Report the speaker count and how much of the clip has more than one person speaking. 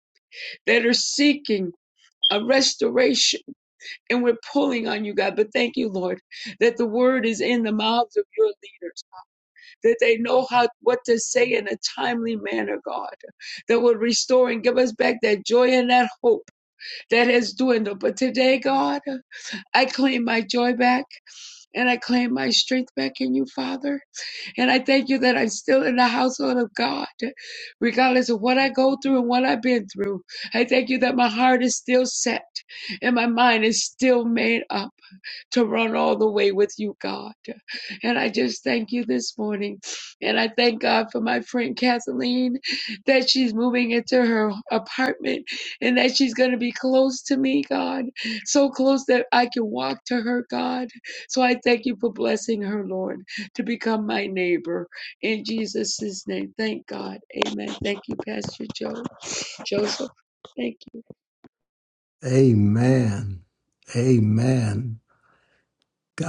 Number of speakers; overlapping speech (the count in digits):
2, no overlap